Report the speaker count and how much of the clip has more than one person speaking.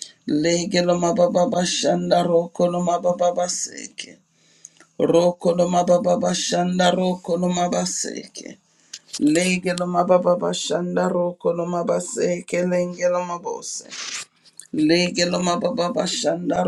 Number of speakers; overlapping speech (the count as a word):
one, no overlap